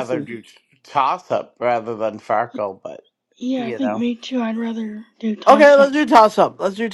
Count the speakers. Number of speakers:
3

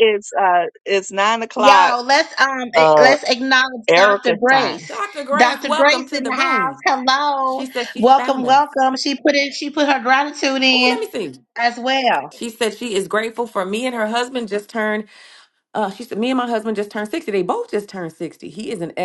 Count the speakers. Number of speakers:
3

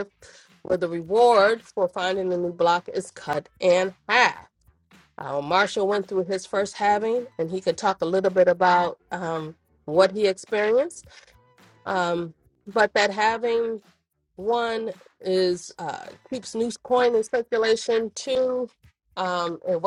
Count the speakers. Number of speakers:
1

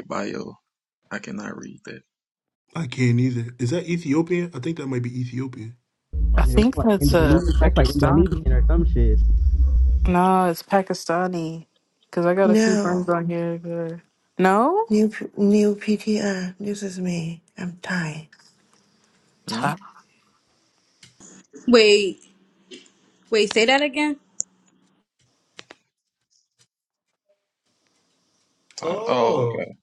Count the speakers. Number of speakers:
6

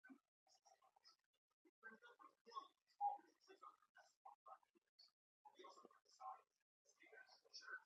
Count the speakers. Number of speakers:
0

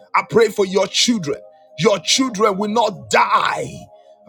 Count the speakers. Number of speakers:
1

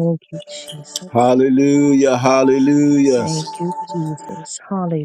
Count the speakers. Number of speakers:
2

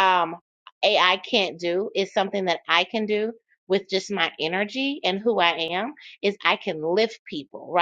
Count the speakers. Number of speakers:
1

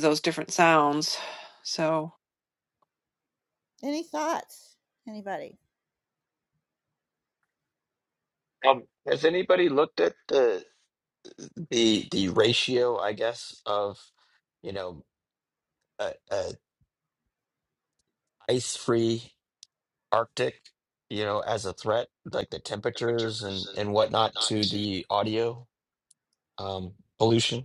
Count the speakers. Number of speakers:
3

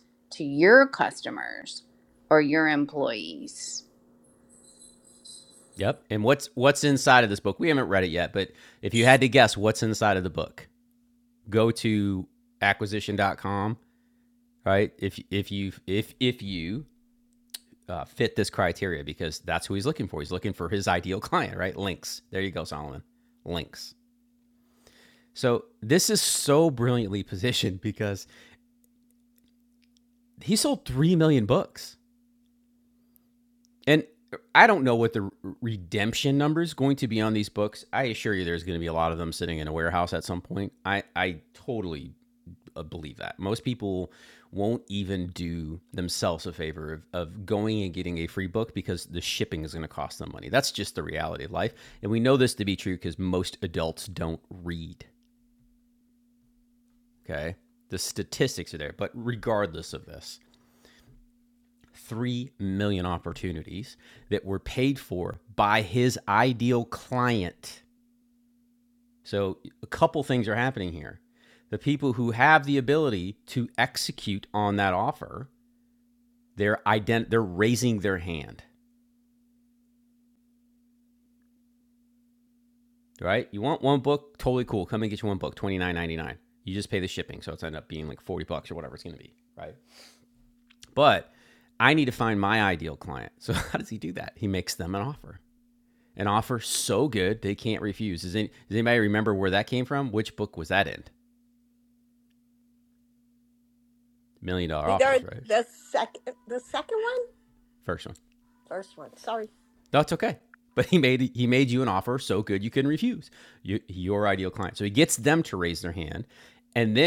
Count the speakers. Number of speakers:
3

